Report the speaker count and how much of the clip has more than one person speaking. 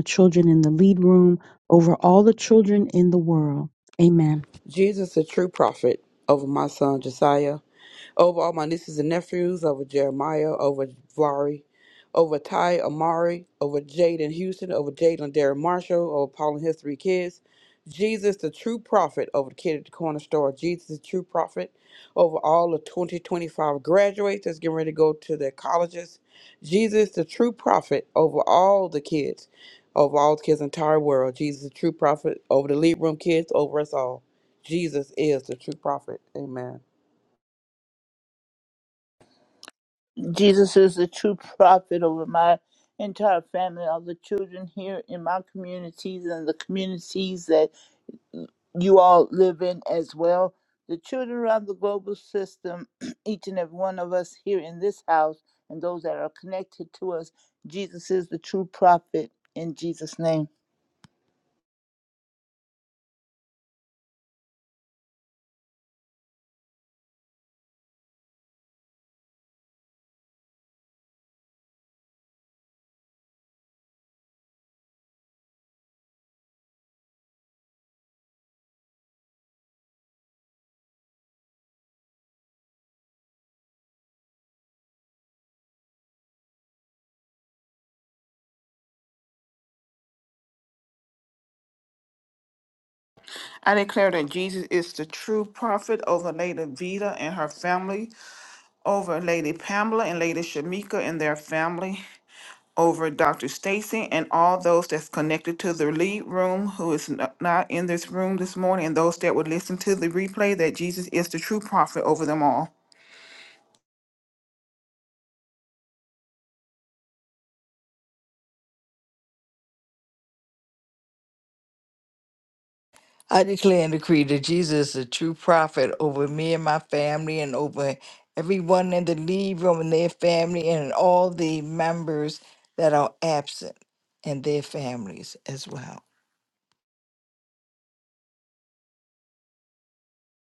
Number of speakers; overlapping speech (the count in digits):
5, no overlap